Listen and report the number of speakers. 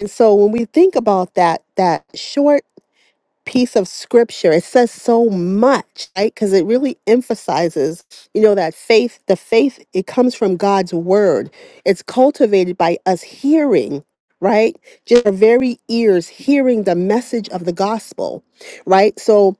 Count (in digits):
1